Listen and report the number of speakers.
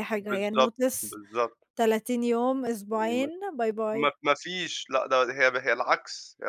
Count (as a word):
two